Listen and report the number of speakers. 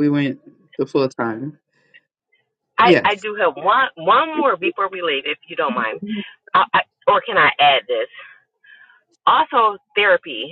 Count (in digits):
2